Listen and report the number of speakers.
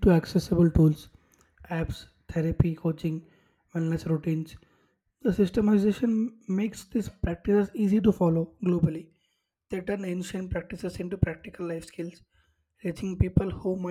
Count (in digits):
1